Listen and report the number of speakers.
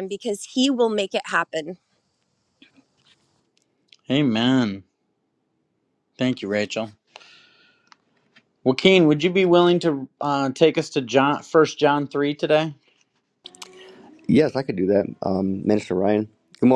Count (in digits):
3